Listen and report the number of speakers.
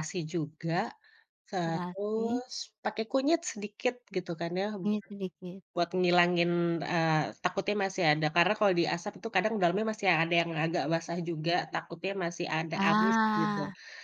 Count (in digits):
2